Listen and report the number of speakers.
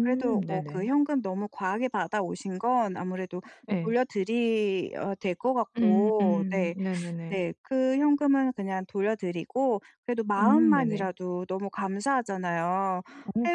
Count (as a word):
two